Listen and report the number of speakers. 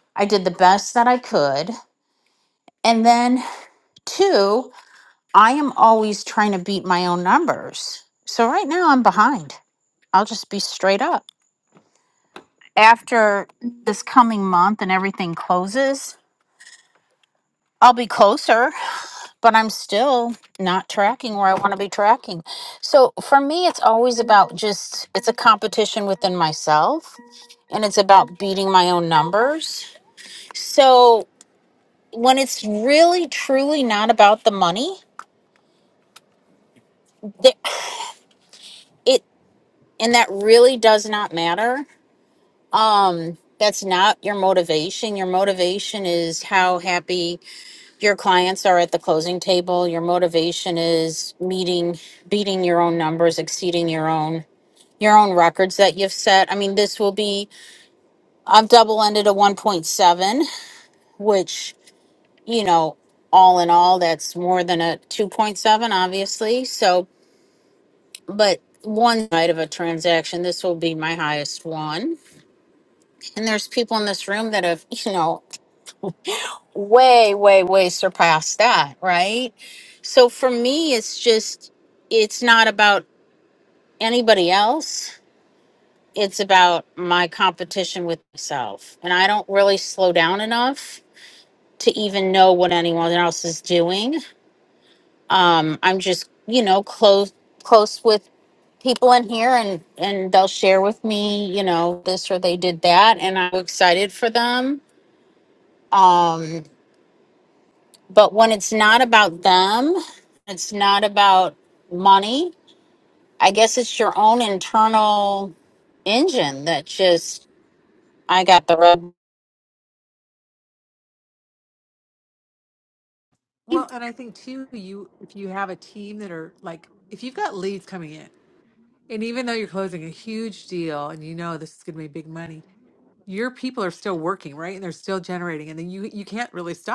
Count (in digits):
2